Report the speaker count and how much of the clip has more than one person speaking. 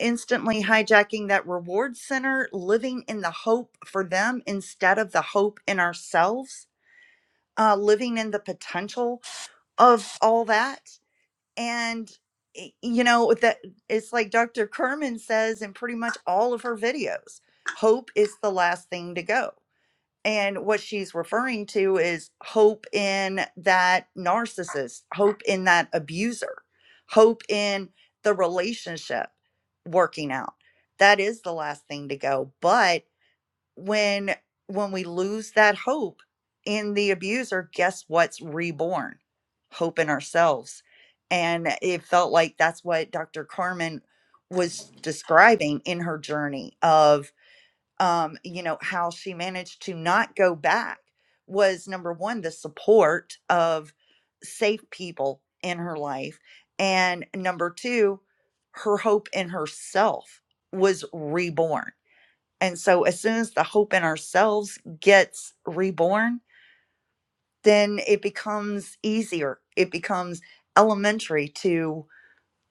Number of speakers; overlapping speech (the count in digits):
1, no overlap